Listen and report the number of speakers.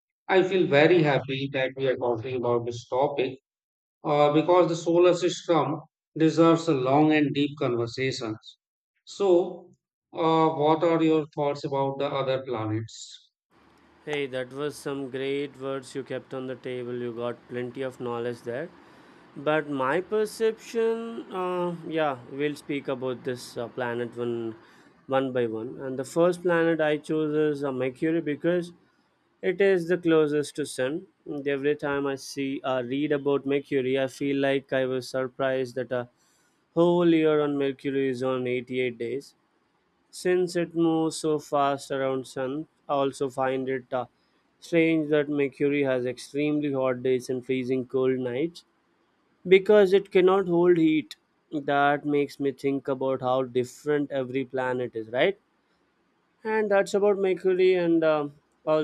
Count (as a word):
two